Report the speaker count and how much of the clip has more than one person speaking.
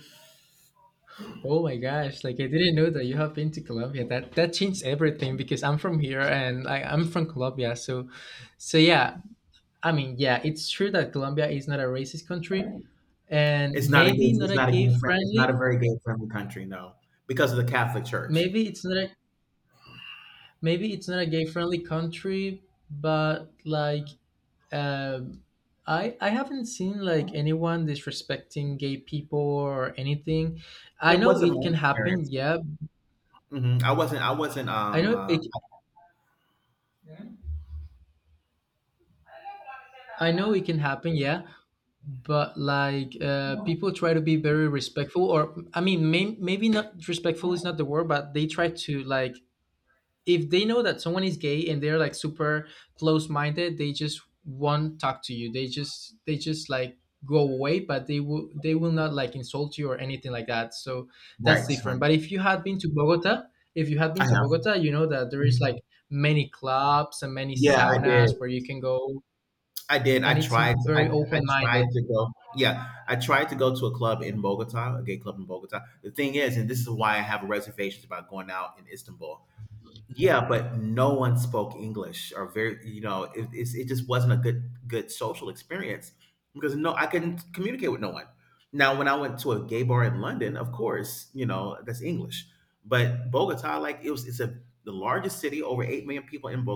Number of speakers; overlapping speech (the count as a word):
two, about 7%